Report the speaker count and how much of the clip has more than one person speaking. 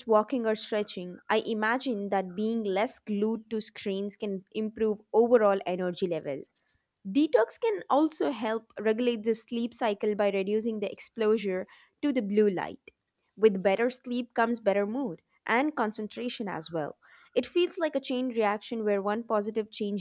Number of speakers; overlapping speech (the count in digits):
1, no overlap